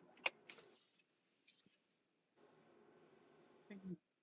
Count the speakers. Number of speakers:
zero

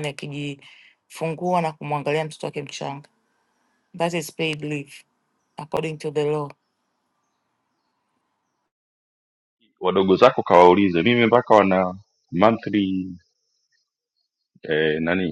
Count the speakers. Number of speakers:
two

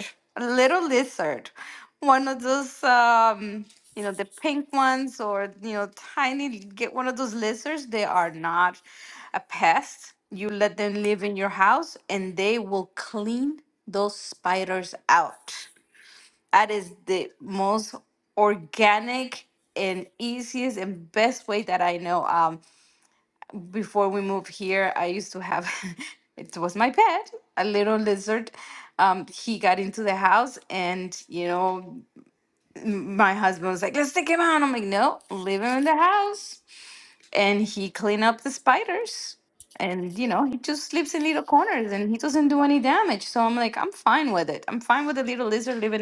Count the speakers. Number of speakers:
one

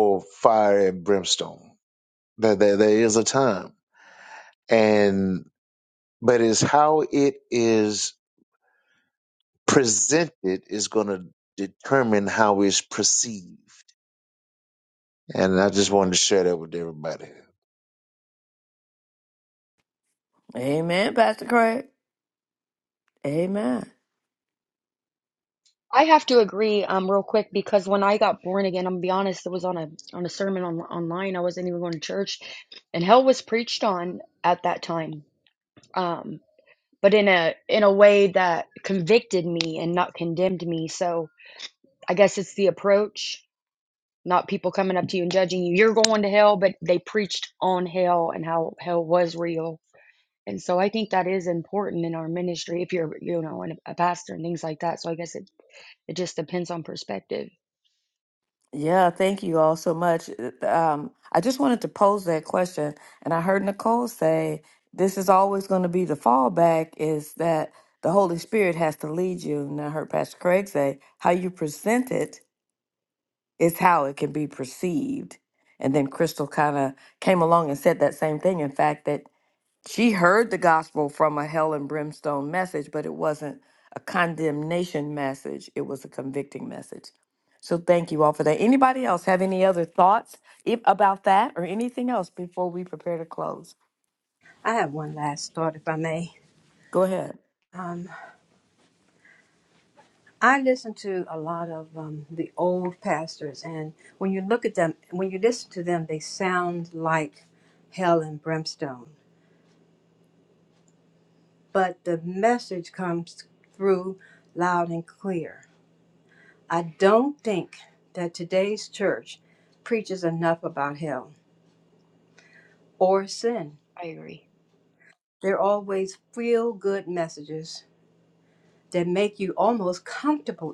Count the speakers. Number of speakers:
four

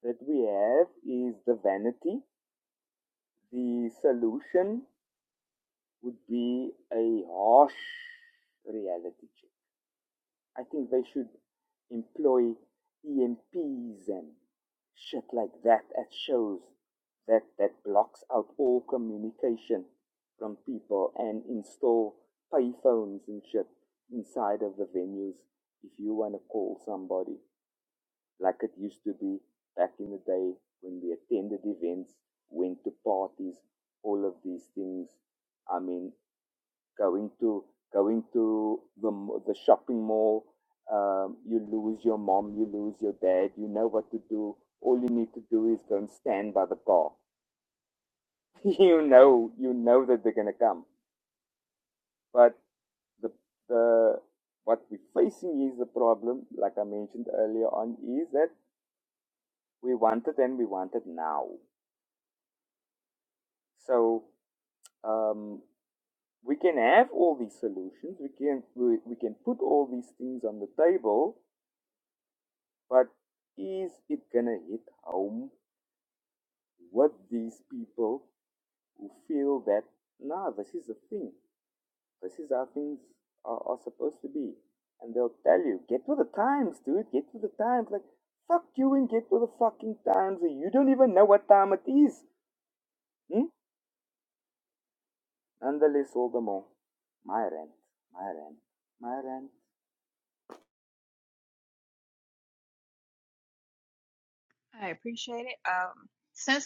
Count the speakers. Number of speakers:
two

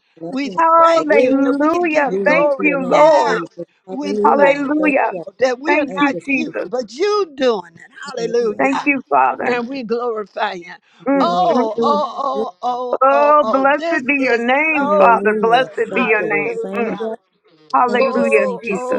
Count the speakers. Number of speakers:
three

